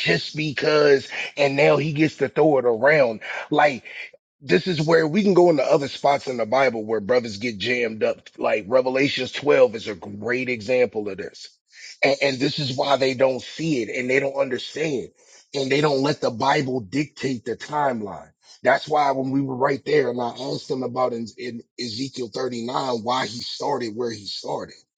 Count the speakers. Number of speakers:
1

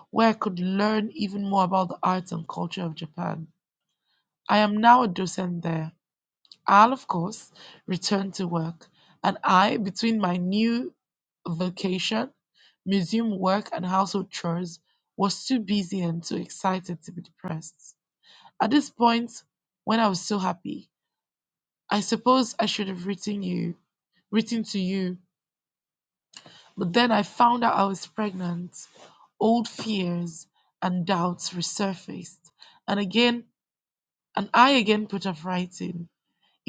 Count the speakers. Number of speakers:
1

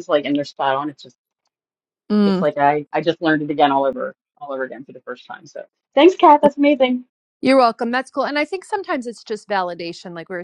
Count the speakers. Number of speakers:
2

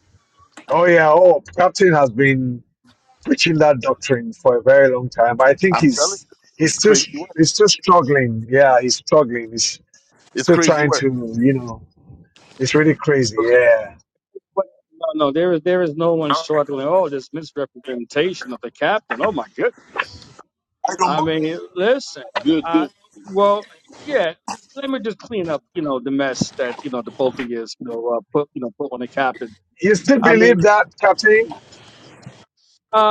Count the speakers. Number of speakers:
3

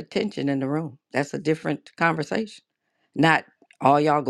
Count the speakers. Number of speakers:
1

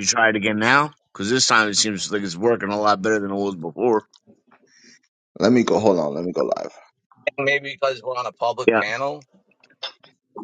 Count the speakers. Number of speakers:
3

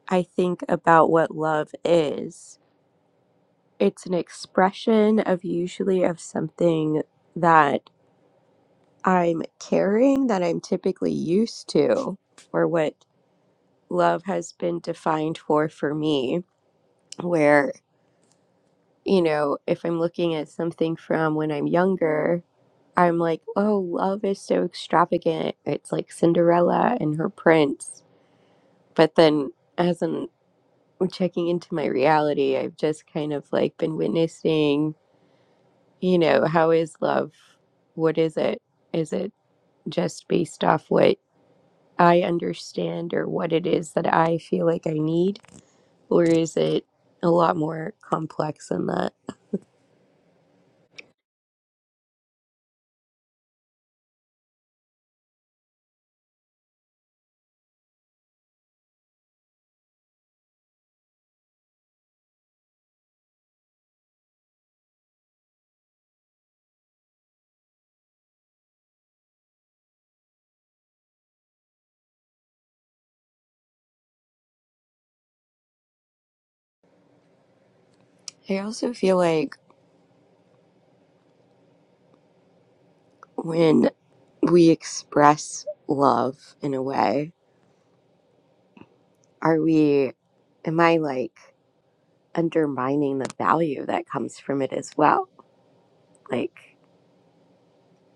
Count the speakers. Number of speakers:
1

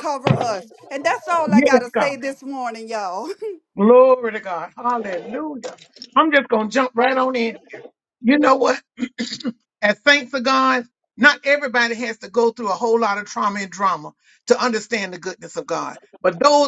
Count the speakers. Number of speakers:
2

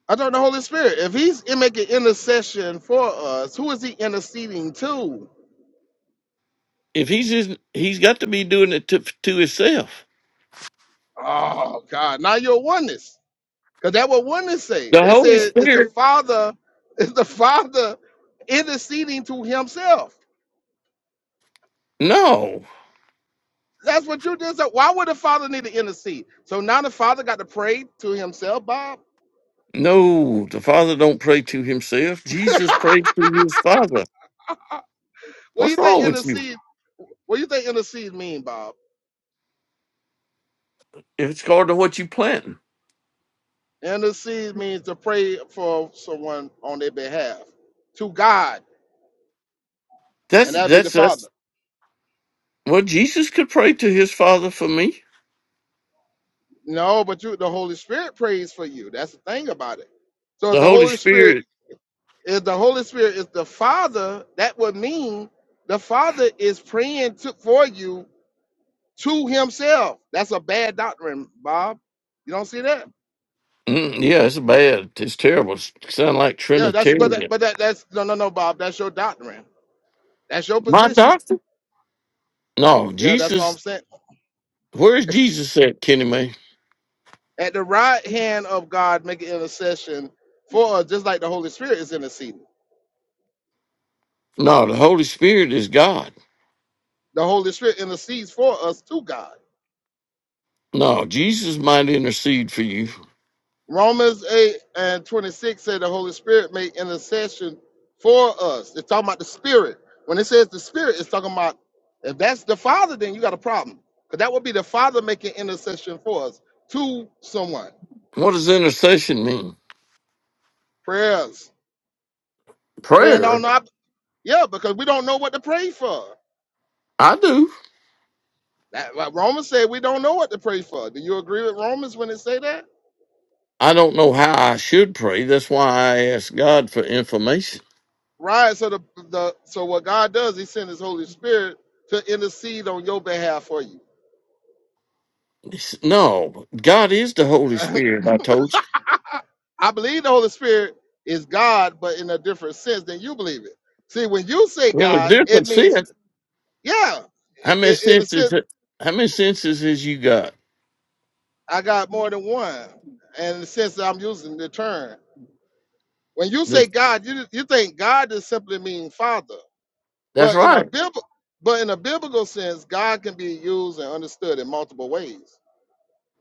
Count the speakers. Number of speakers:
2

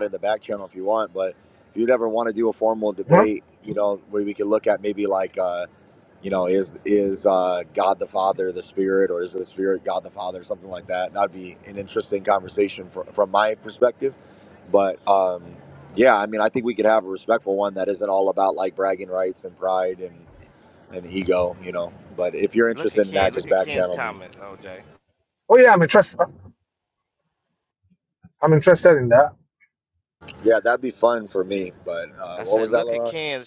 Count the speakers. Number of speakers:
3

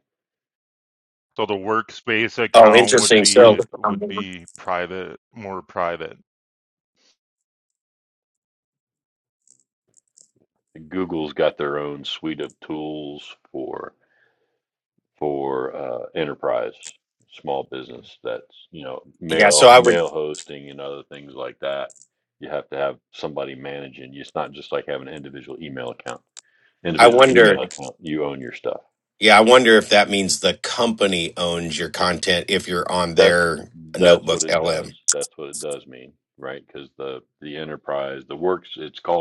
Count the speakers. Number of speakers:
3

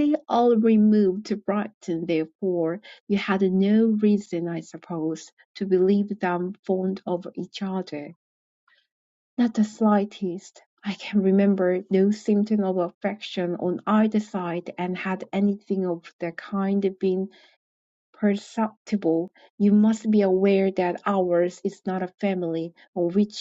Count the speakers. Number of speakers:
1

